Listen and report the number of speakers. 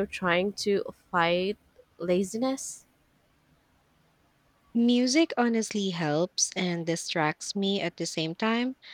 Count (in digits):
2